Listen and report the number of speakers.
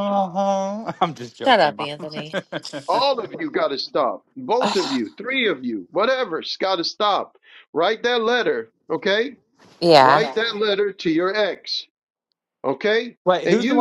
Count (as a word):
three